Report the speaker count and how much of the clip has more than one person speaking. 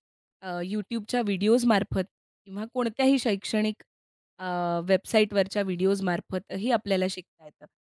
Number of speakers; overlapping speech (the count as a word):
one, no overlap